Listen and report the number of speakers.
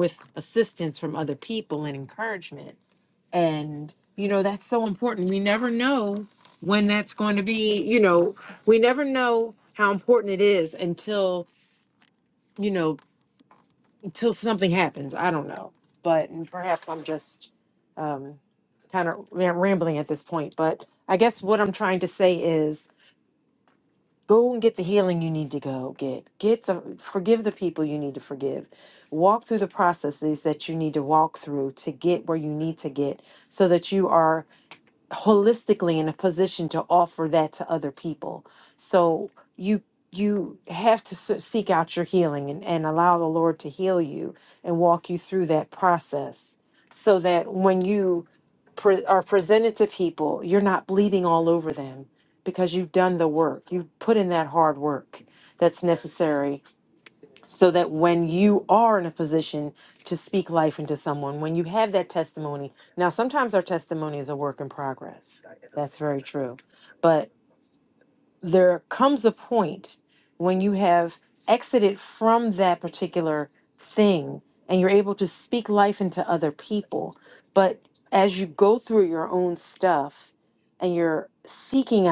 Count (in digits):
1